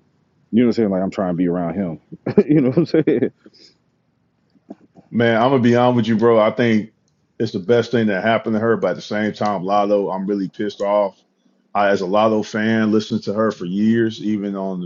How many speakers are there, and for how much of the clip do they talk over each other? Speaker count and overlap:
2, no overlap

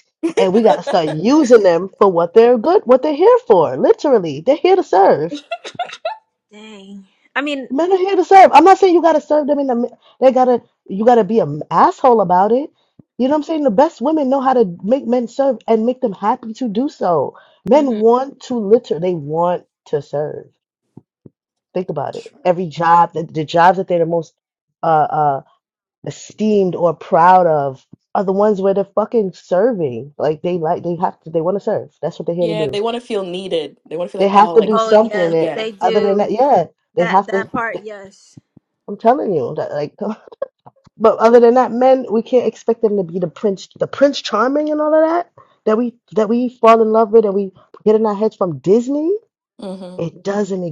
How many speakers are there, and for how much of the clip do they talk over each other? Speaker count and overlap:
3, about 7%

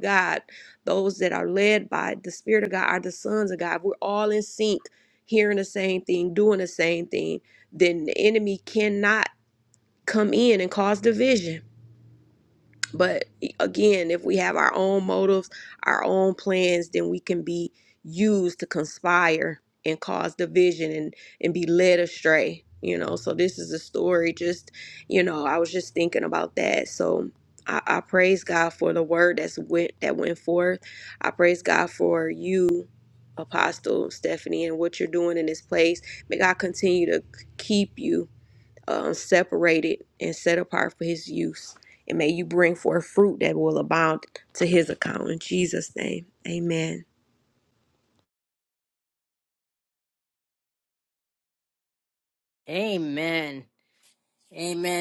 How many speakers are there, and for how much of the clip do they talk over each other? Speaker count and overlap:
2, no overlap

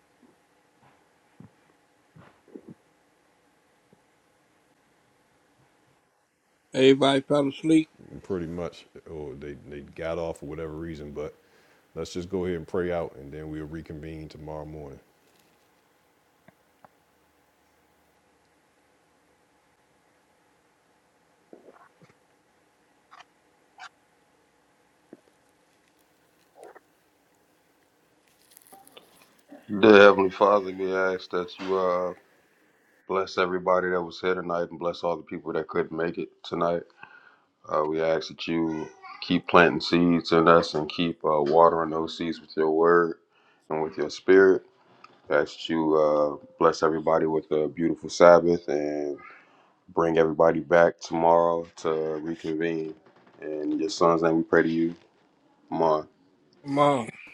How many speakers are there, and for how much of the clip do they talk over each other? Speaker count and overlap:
3, no overlap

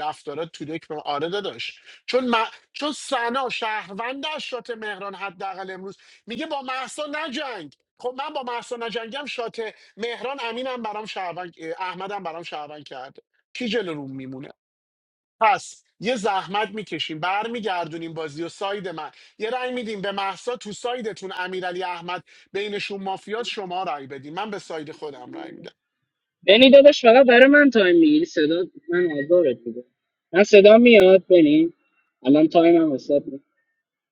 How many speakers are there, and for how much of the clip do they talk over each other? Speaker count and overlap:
2, no overlap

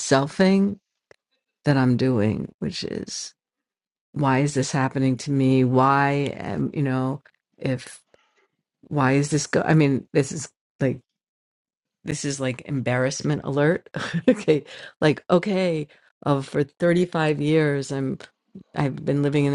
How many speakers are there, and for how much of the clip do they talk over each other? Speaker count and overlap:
1, no overlap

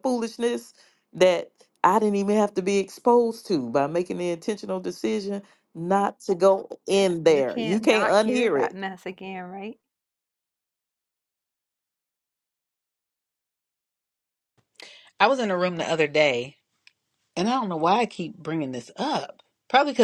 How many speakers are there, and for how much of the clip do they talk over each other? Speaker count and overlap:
3, about 7%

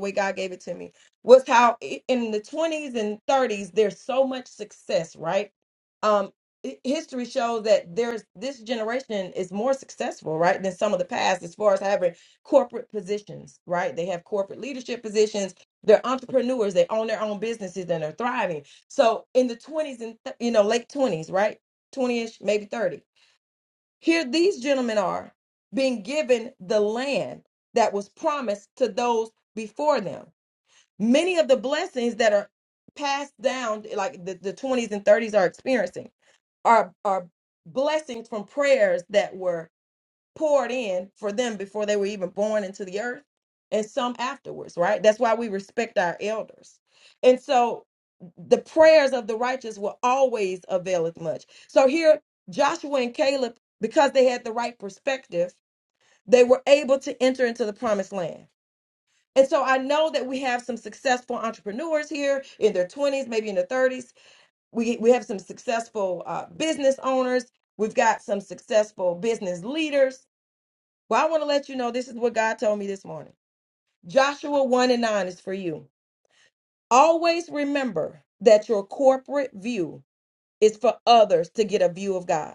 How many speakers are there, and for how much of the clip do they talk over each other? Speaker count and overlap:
1, no overlap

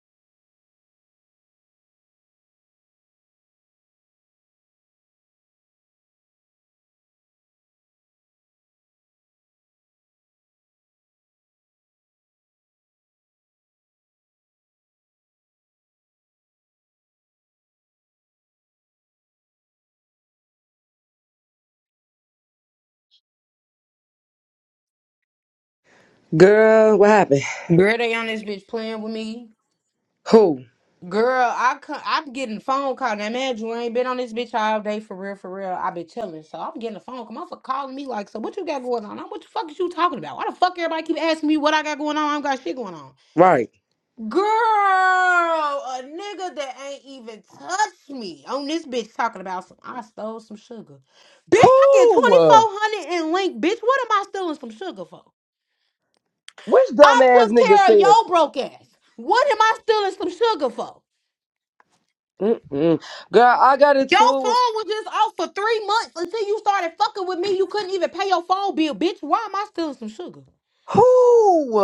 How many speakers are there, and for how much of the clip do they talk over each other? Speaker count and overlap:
2, about 4%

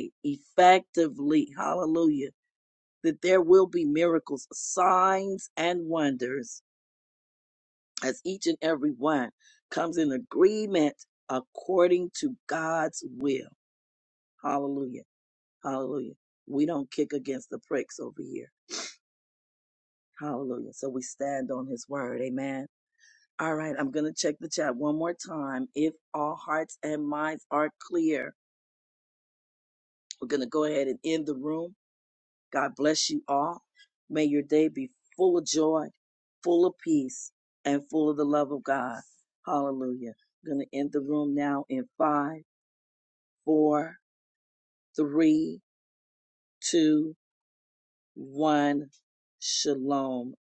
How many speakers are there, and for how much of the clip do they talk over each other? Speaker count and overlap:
1, no overlap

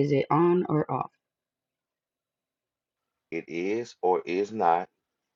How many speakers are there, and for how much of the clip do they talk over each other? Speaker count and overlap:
2, no overlap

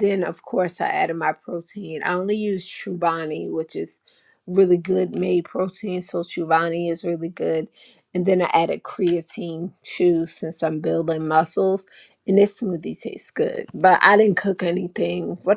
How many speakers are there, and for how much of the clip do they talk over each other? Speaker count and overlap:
1, no overlap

